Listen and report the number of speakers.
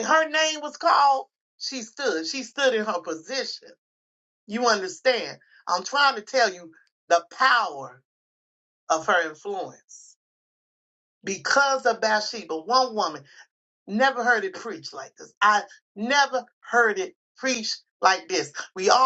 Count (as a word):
one